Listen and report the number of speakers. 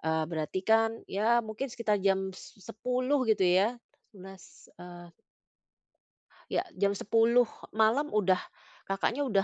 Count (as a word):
one